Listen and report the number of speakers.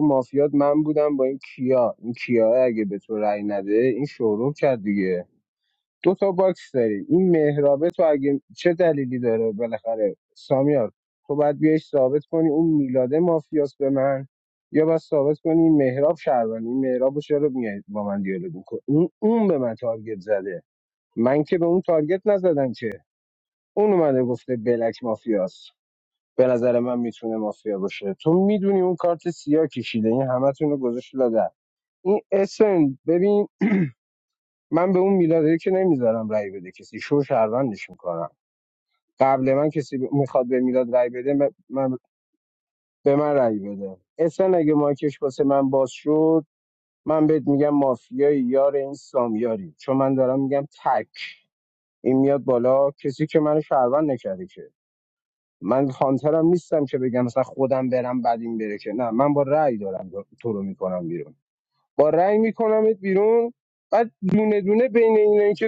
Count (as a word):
one